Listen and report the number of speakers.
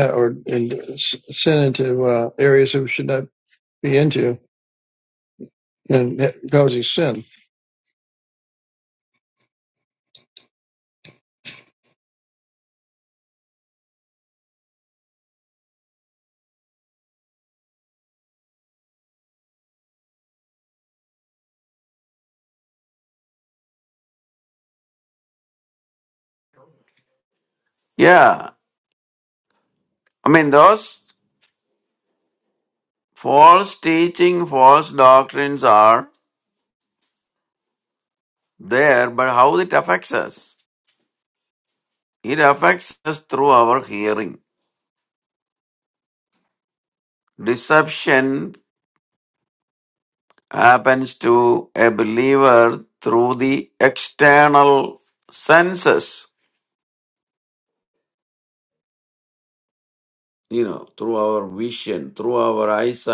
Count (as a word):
two